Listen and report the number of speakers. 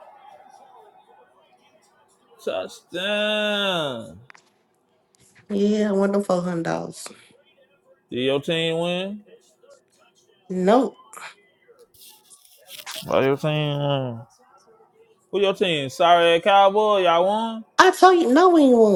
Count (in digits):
2